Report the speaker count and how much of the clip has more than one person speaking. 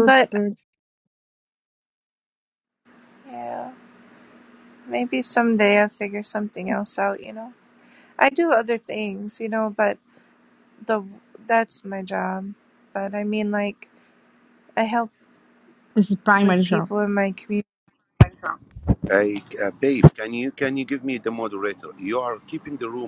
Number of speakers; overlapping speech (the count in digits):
3, about 4%